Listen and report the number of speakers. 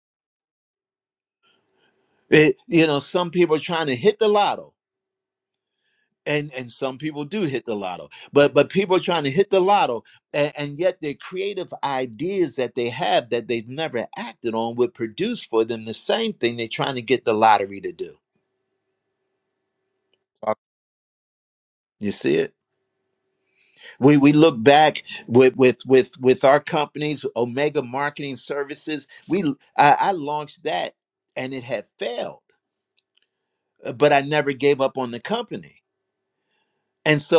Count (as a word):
one